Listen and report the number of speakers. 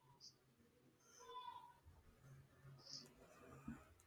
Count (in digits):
0